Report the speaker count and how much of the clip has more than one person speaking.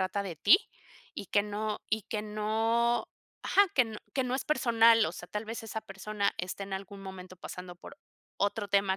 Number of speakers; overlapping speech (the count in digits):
1, no overlap